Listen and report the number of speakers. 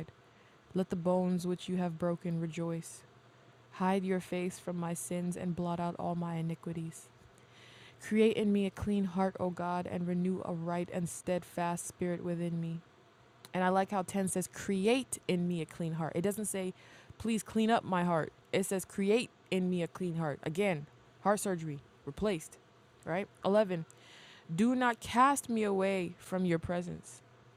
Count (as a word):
one